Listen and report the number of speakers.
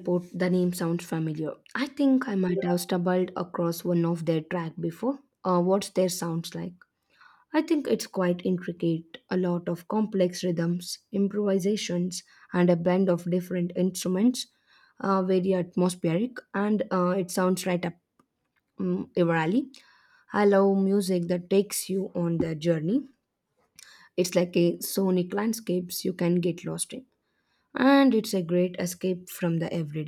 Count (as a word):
one